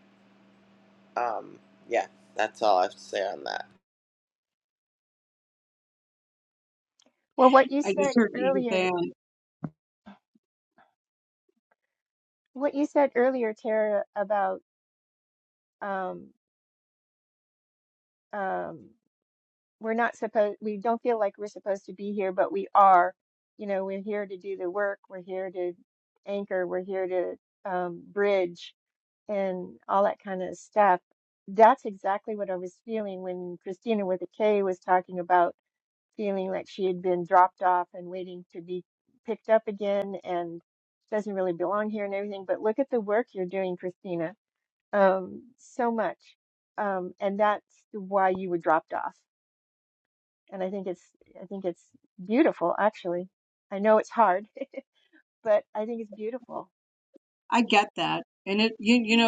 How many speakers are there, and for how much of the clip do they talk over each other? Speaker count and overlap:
3, about 2%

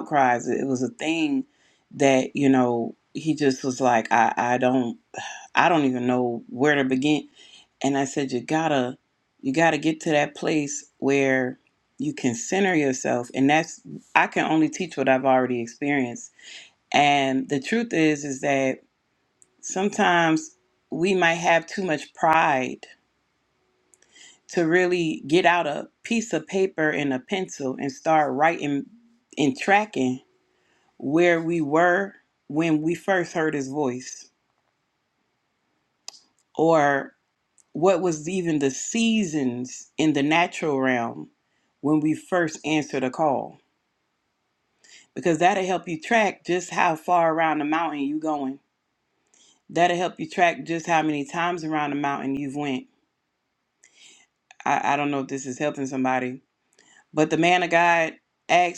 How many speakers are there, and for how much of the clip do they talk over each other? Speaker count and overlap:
1, no overlap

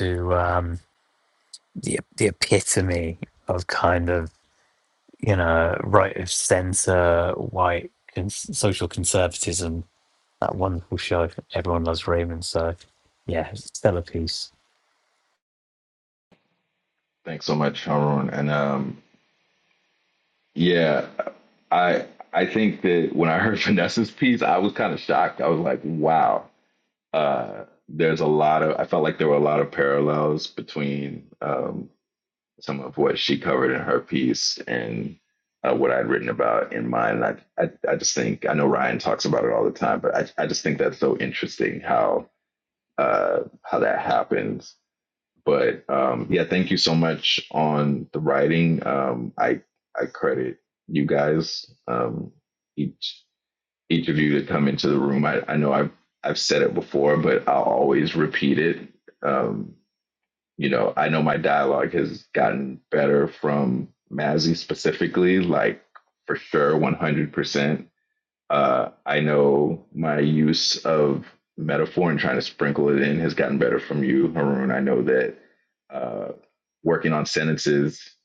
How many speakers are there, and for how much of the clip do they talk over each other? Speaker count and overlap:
2, no overlap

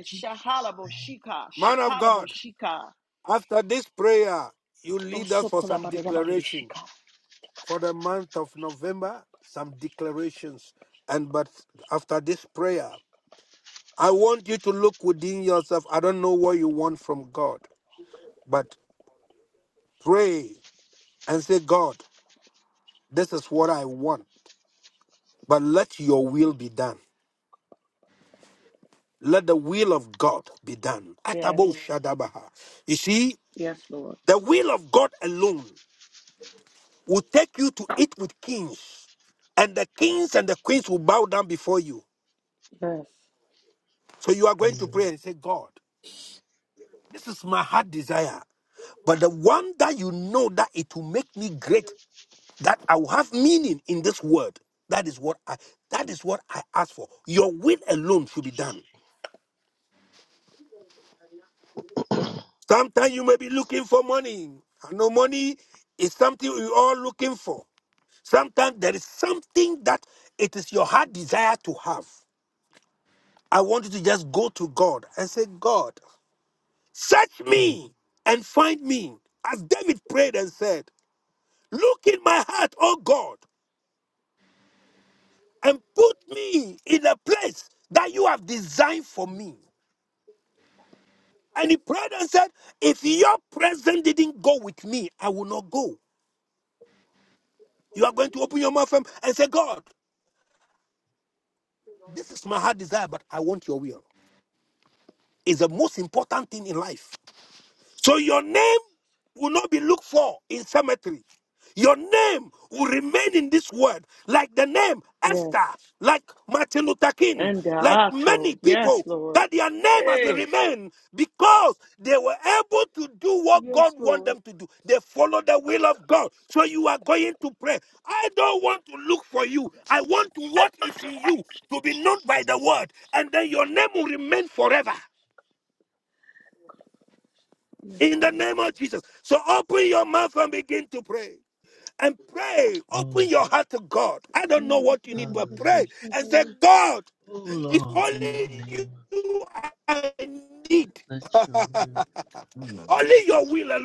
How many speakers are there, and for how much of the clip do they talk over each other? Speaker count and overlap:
3, about 5%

